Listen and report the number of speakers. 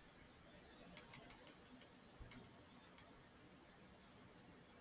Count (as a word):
zero